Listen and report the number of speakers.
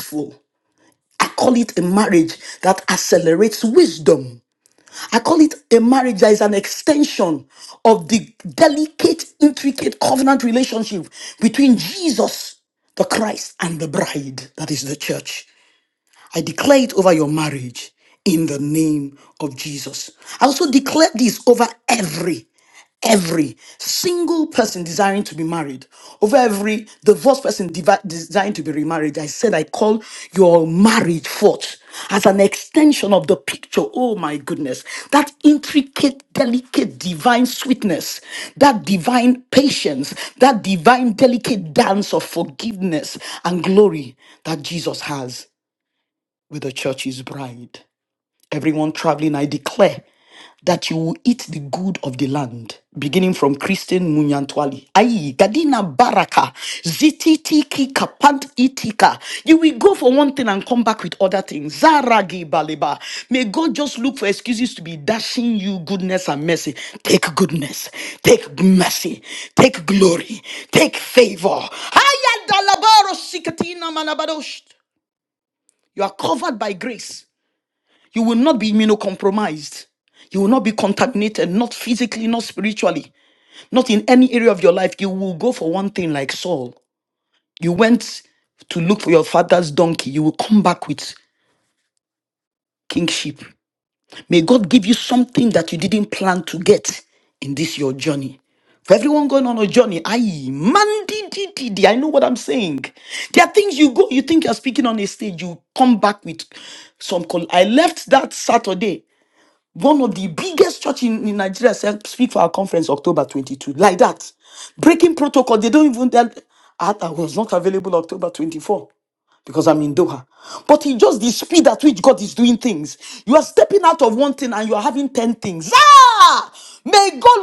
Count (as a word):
one